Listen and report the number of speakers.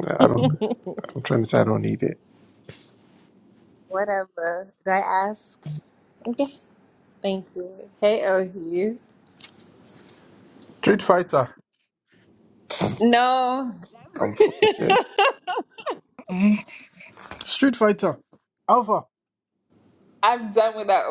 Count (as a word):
three